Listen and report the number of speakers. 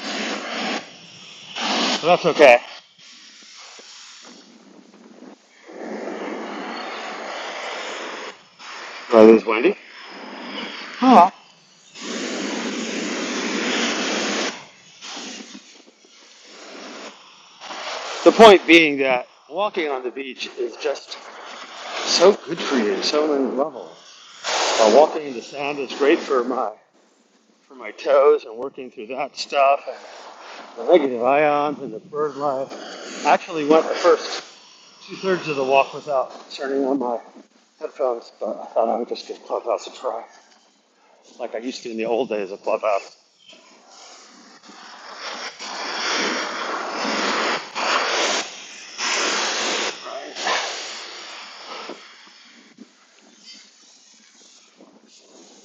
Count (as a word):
one